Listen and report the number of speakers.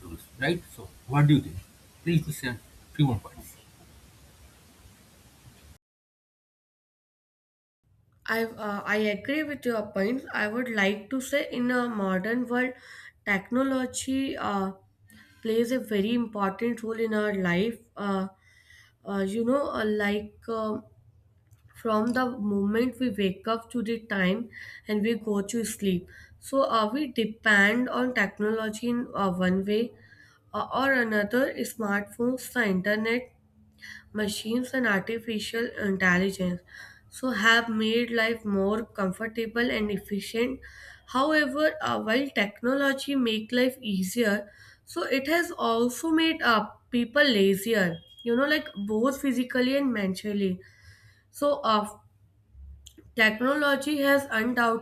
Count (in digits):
2